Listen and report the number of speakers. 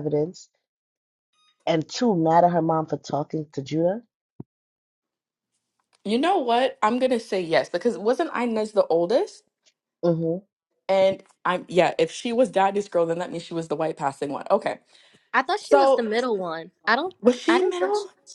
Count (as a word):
three